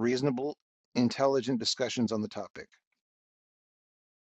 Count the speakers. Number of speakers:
1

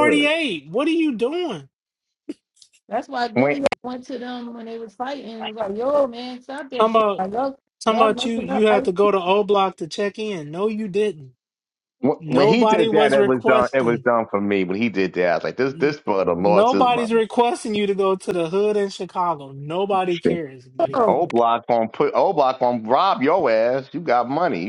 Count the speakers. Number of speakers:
3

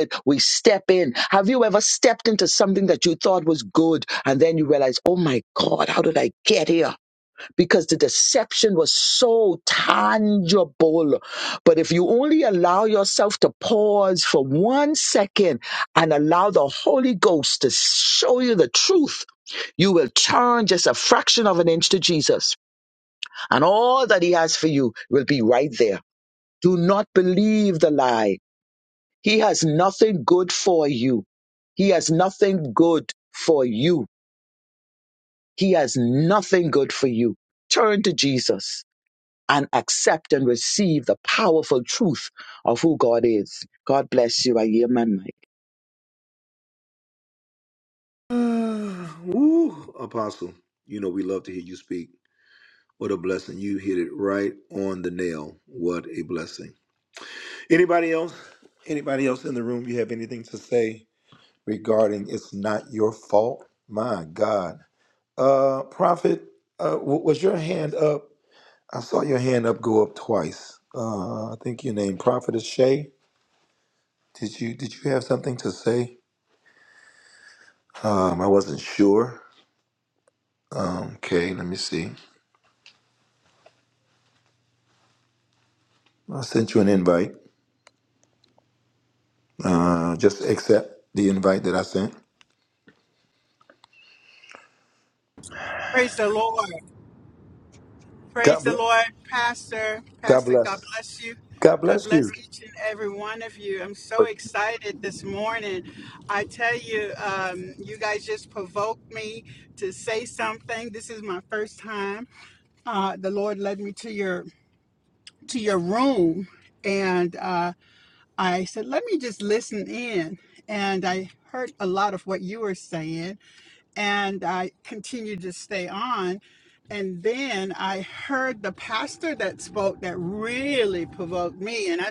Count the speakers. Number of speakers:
3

